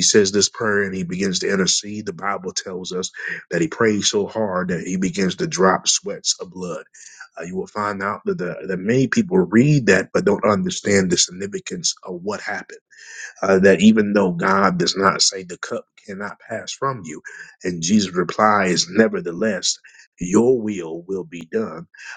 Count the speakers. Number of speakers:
1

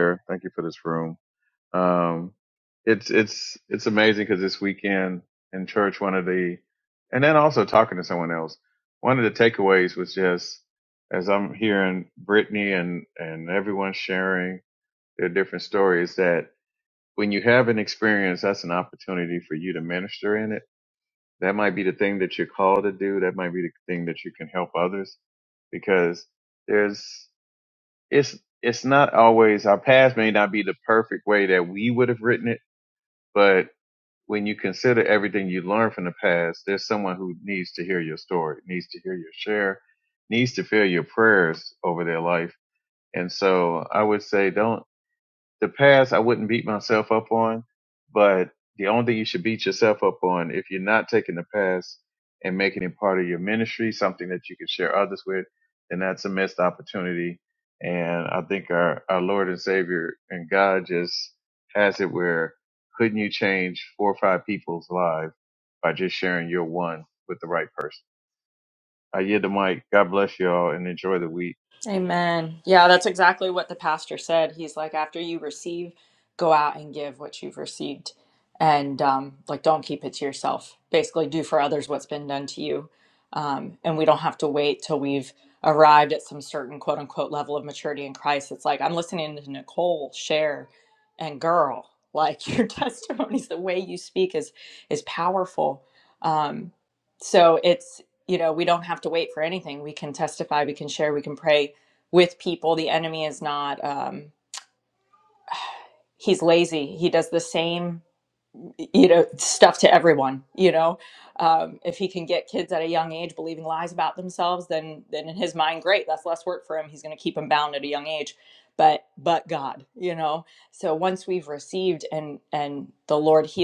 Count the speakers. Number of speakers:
2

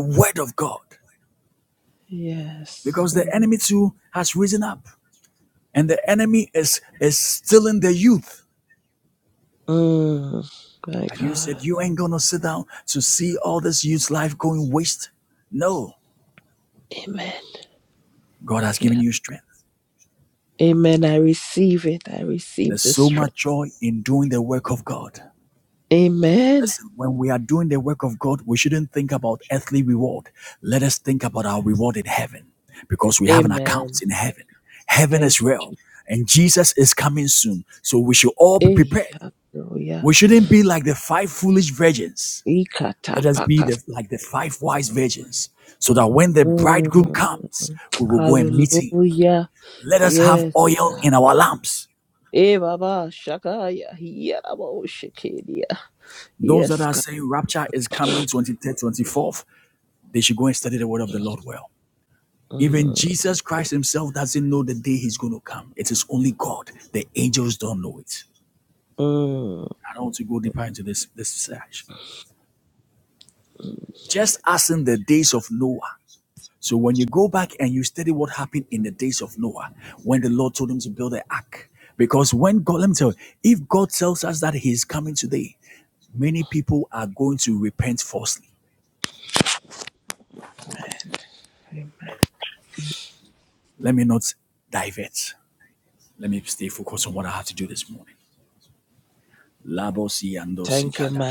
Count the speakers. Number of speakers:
2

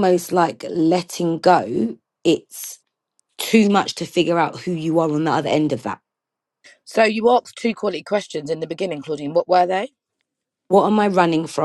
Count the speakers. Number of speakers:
2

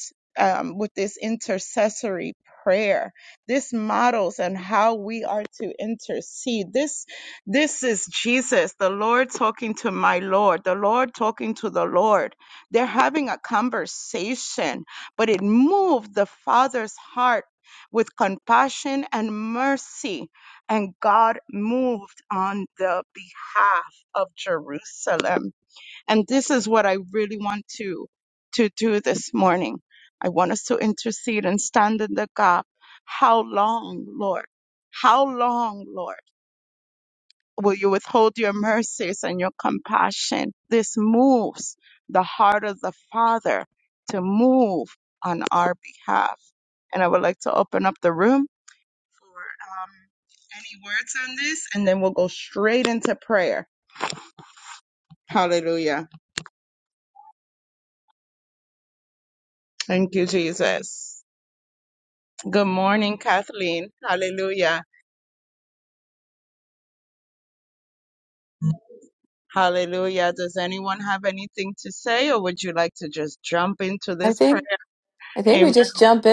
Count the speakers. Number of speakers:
2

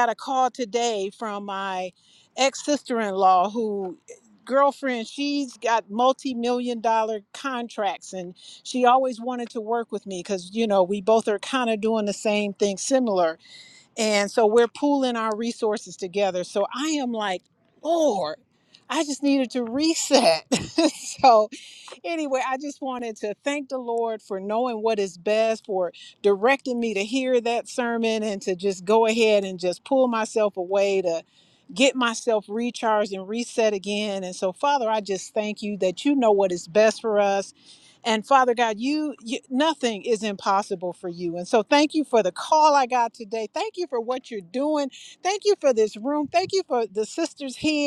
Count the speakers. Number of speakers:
1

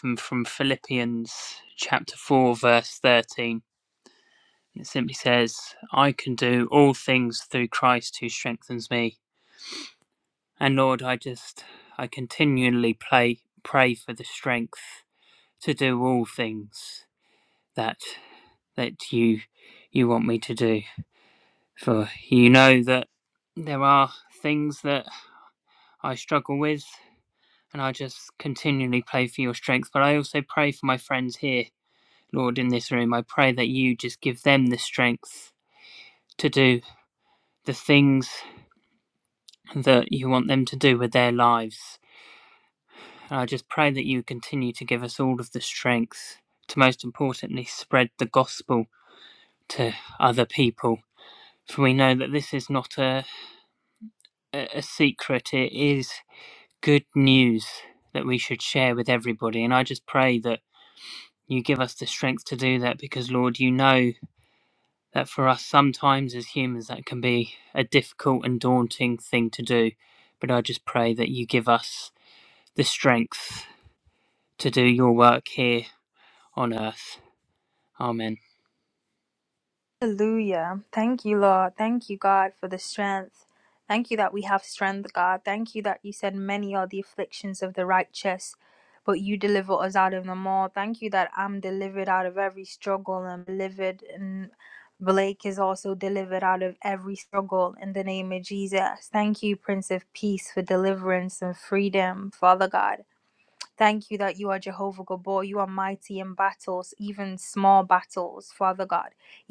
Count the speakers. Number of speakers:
2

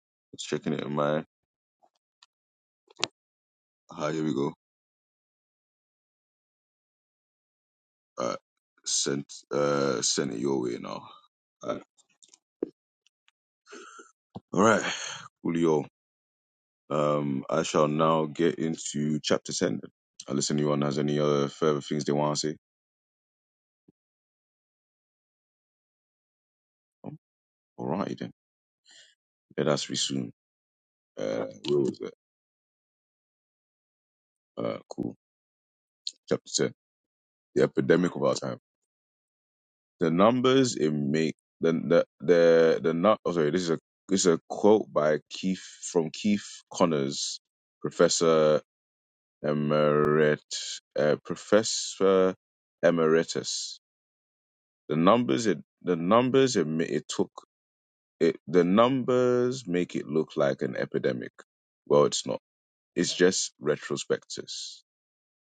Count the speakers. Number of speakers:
1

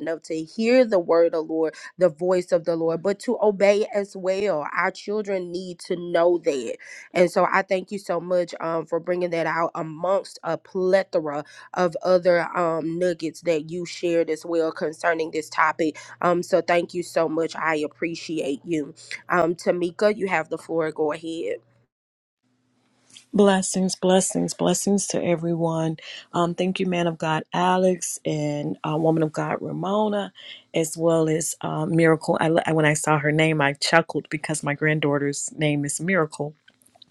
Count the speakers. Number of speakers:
2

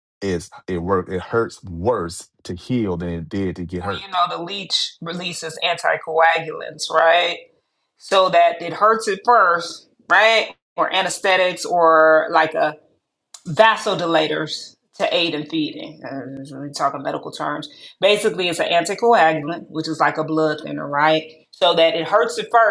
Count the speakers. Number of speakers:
2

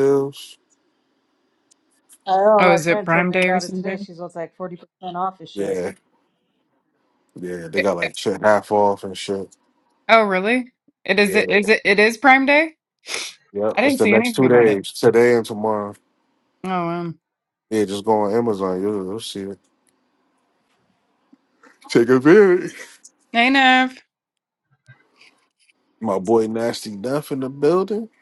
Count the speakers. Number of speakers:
3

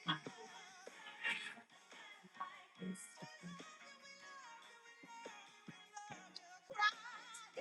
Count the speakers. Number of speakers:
0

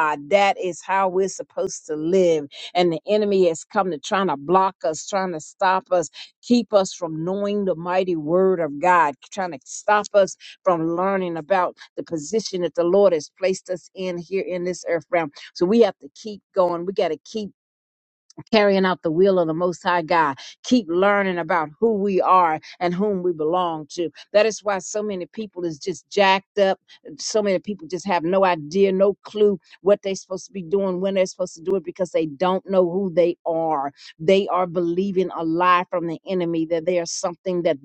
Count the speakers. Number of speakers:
1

